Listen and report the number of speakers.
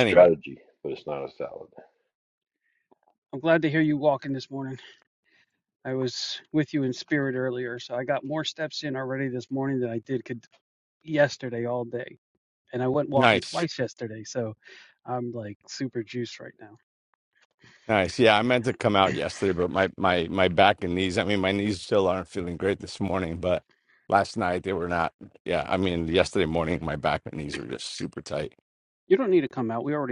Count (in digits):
3